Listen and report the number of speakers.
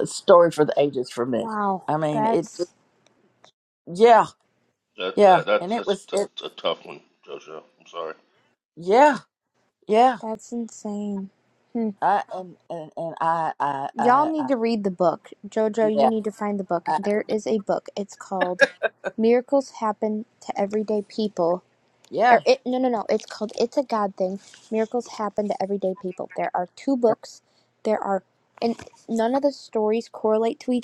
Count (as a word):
three